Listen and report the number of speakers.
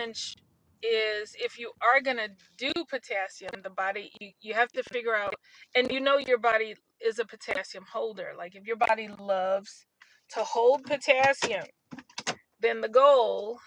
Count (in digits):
1